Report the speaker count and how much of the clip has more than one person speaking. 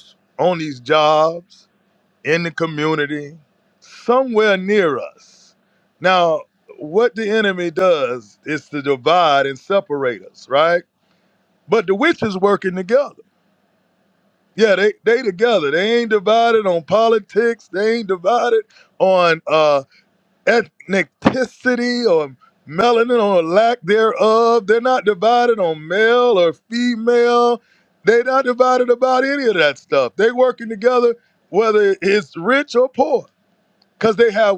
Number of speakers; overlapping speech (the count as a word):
one, no overlap